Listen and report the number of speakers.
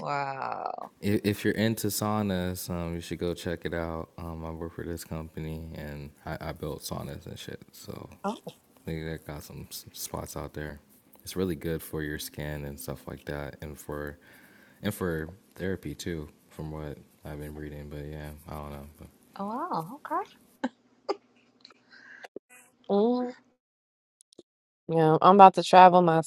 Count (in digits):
3